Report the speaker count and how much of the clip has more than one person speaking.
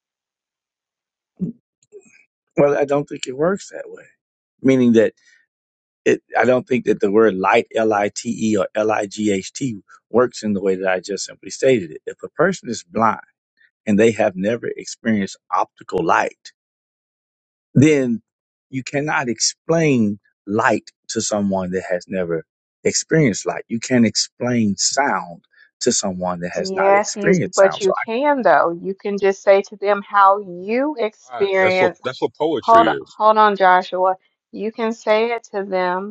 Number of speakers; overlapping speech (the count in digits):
3, about 7%